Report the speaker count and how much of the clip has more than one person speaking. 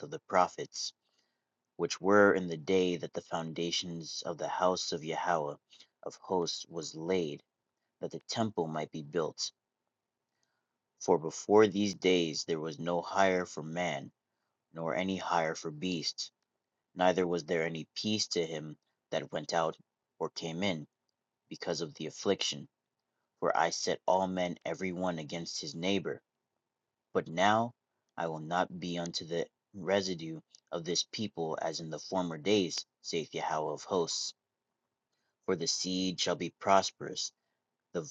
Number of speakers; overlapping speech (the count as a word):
one, no overlap